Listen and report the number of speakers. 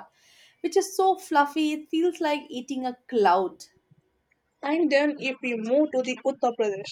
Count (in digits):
2